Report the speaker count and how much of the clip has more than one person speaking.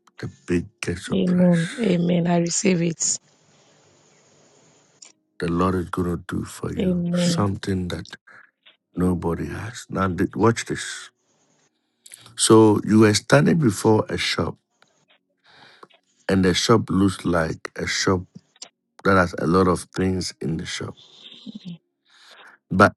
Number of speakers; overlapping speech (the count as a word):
two, about 5%